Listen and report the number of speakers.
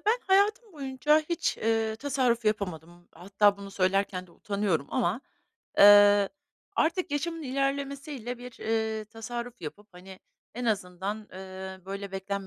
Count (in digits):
1